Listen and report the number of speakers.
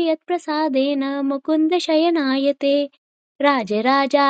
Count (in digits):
1